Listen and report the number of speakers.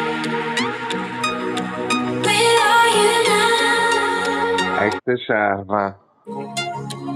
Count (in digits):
2